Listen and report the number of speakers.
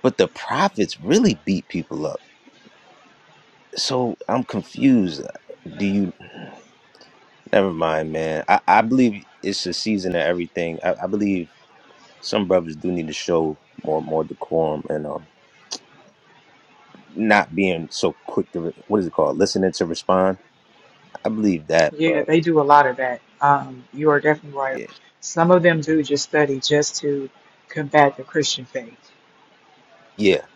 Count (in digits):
2